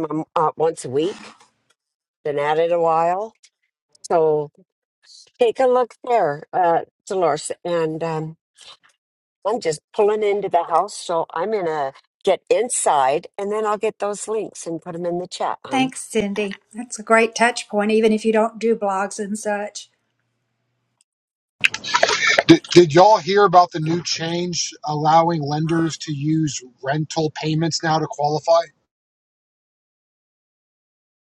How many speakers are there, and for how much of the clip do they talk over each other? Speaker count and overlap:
three, about 1%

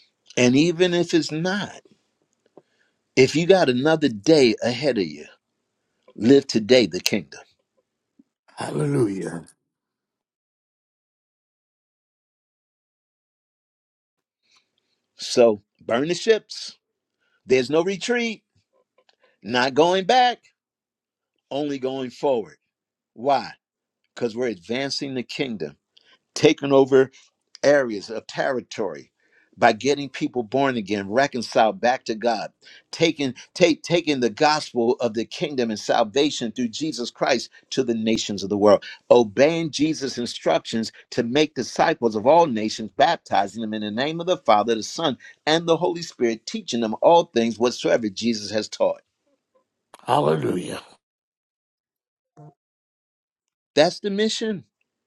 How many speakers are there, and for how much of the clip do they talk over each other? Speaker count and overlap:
two, no overlap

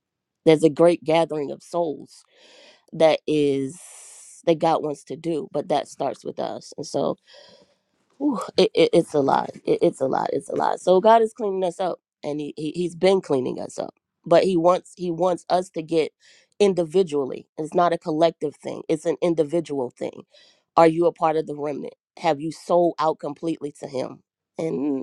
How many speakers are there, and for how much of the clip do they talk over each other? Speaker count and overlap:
one, no overlap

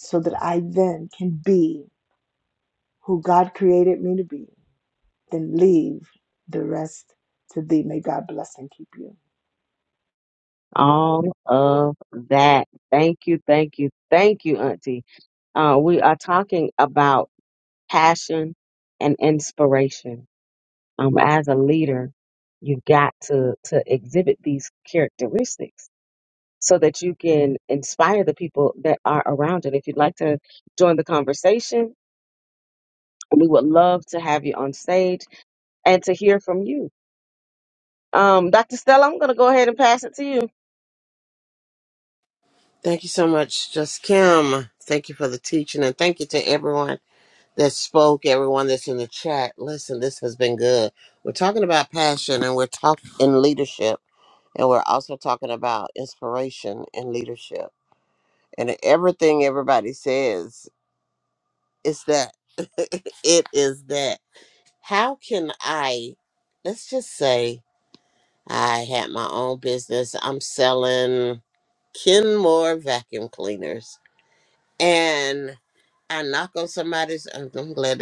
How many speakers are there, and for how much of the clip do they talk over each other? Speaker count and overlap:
three, no overlap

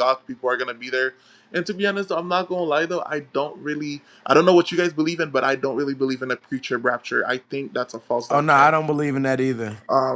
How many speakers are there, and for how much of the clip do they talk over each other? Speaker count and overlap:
two, about 4%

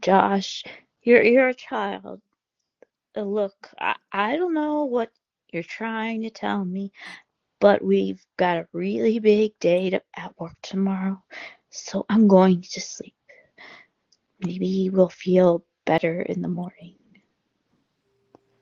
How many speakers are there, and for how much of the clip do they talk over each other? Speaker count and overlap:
one, no overlap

